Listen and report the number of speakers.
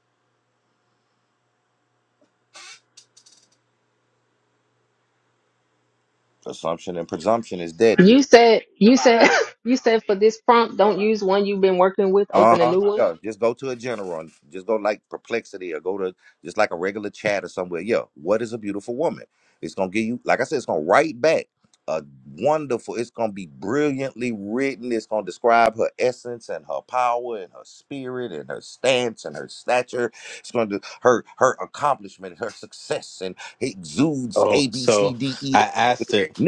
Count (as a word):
three